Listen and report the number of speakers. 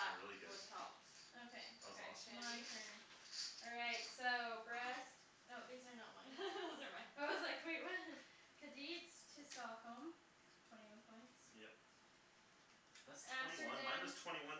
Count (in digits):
3